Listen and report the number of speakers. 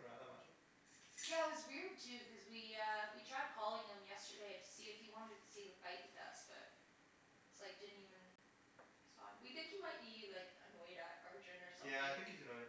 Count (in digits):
2